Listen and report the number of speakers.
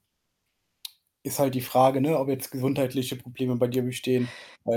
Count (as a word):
one